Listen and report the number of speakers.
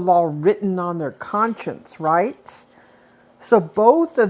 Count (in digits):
1